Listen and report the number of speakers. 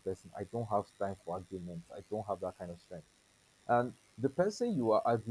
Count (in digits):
1